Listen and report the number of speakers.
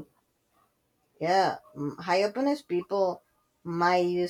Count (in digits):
1